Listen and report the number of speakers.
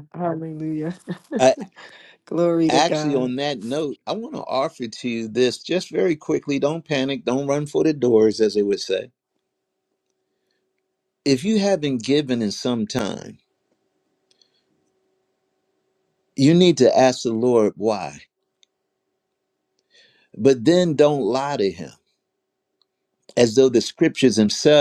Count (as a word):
two